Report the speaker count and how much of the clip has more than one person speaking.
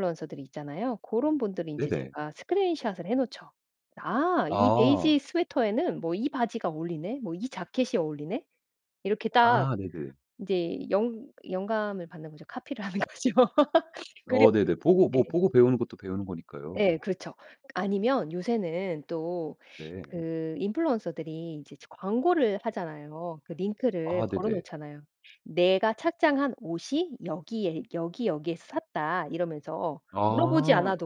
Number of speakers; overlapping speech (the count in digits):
2, about 10%